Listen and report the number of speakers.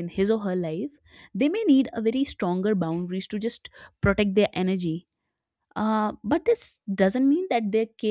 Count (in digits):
1